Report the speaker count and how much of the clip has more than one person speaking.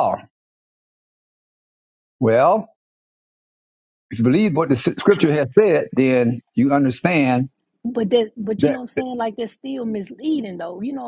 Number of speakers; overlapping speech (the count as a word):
two, about 2%